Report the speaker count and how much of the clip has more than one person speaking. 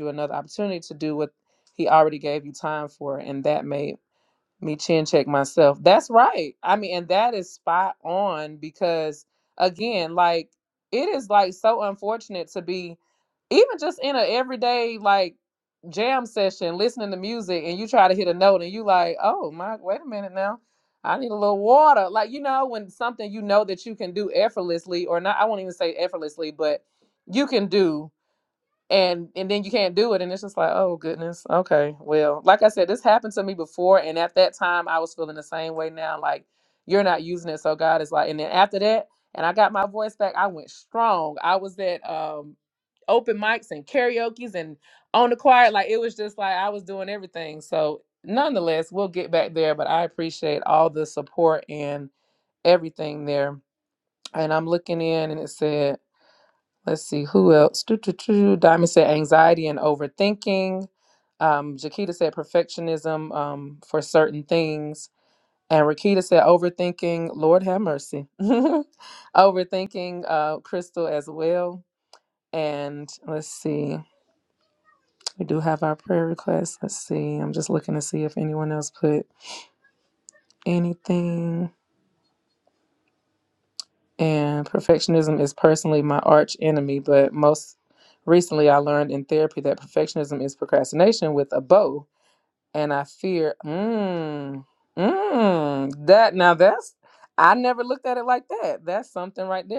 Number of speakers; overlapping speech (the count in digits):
1, no overlap